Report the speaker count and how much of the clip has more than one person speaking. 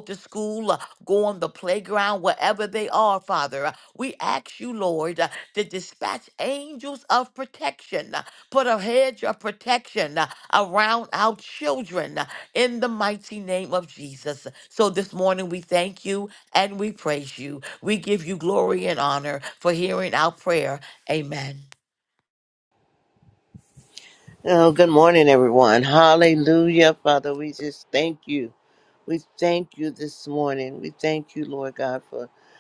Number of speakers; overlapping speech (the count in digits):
2, no overlap